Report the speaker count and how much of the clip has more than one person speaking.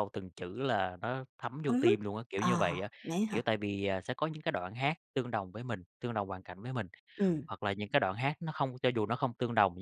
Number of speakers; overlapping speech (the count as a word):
two, about 6%